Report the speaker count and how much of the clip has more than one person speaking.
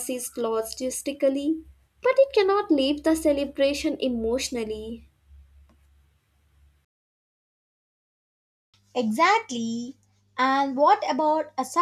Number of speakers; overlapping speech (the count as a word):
two, no overlap